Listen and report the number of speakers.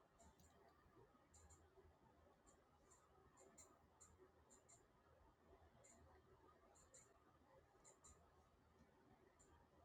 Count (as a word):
zero